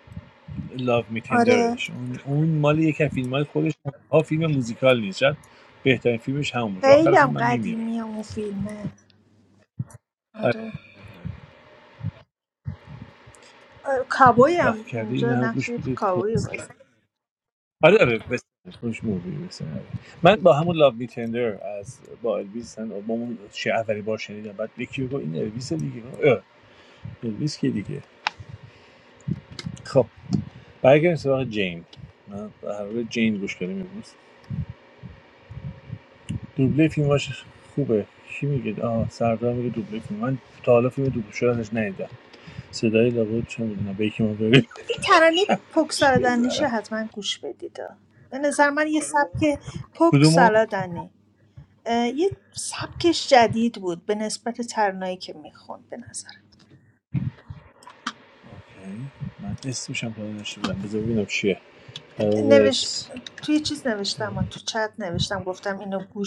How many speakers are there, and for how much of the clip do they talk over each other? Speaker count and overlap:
2, about 8%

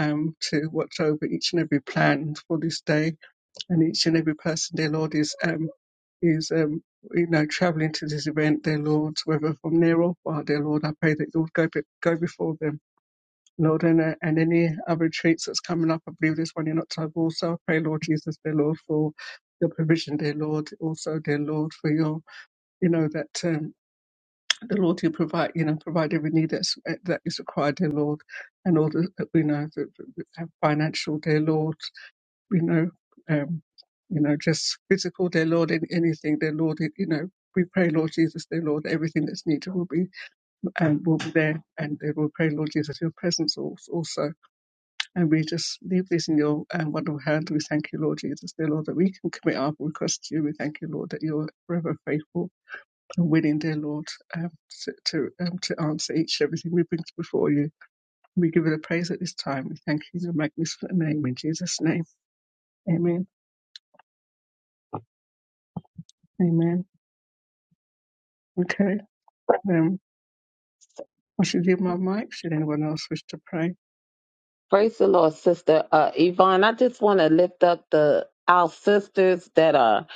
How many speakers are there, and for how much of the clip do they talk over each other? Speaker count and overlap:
2, no overlap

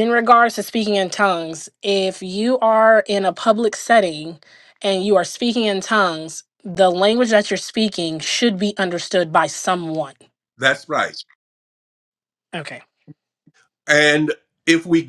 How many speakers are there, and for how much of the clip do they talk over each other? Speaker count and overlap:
2, no overlap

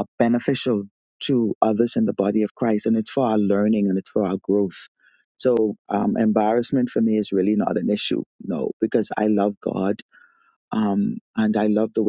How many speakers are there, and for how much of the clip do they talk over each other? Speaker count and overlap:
1, no overlap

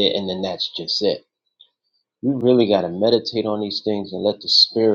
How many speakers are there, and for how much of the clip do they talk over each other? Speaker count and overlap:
1, no overlap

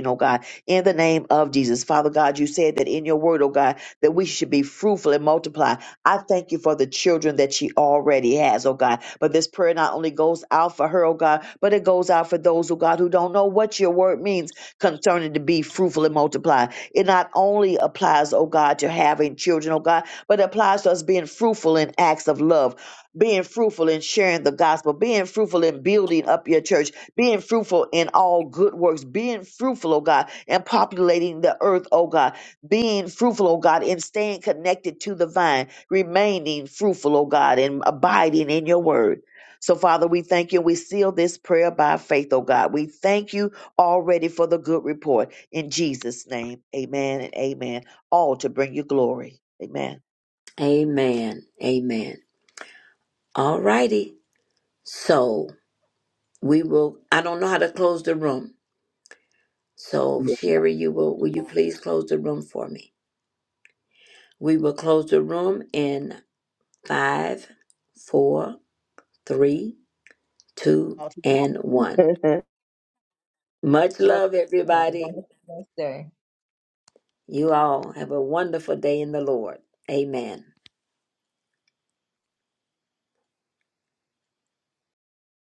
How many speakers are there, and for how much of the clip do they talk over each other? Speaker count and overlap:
3, about 1%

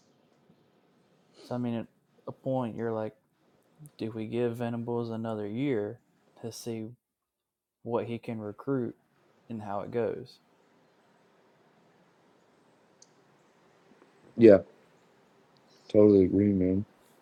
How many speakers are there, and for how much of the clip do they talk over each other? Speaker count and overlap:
2, no overlap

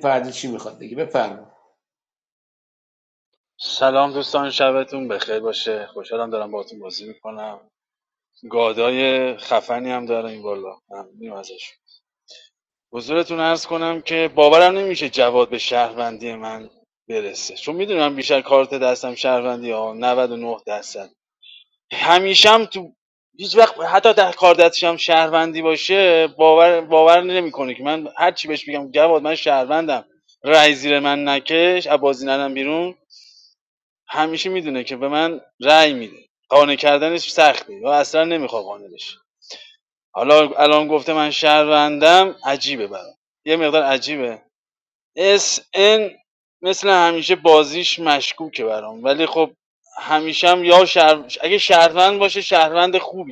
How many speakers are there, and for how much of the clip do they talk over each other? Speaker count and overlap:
2, no overlap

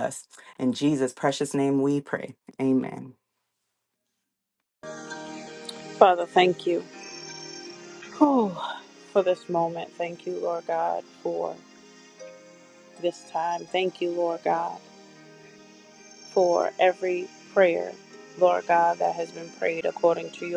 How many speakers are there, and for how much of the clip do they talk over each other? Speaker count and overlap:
2, no overlap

